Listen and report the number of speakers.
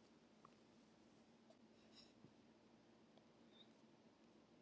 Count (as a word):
zero